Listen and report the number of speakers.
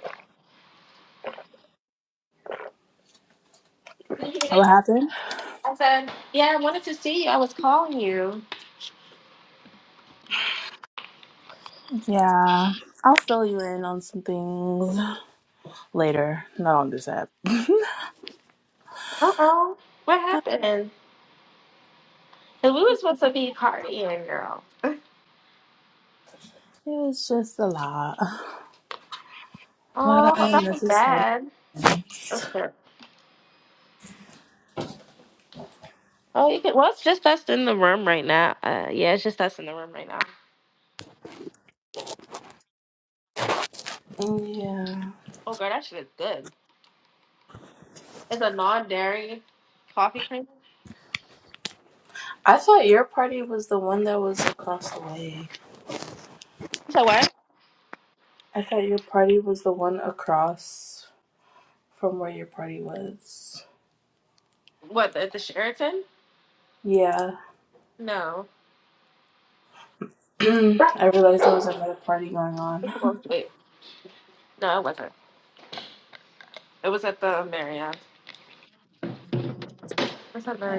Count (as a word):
two